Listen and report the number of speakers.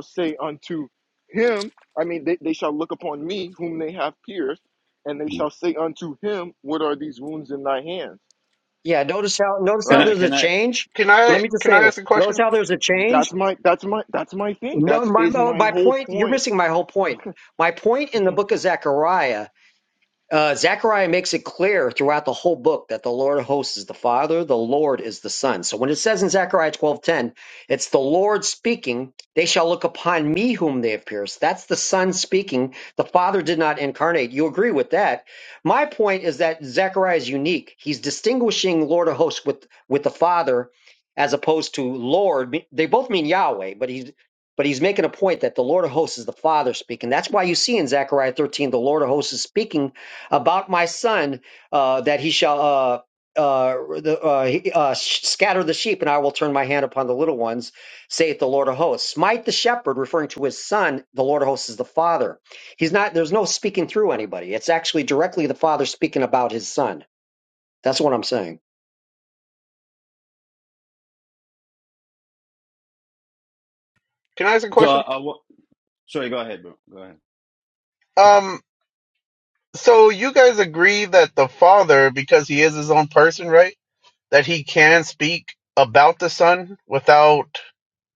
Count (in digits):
4